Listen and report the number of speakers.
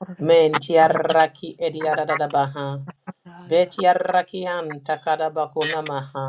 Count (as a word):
one